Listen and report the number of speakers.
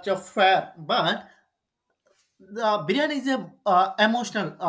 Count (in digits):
1